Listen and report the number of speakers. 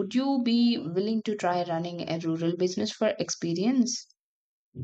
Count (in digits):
1